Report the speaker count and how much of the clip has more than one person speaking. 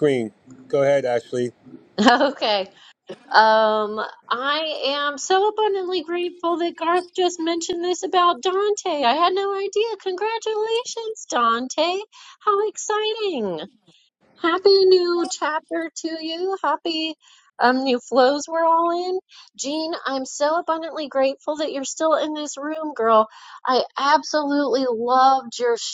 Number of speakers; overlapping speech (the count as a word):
two, no overlap